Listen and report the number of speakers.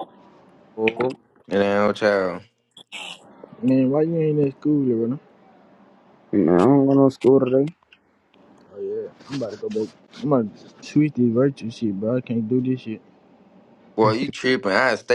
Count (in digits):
3